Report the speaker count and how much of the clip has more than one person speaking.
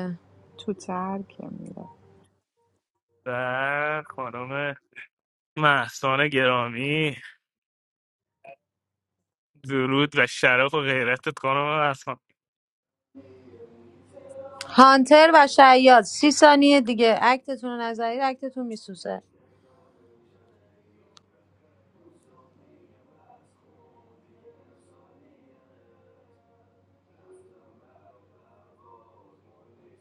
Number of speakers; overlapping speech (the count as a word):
three, no overlap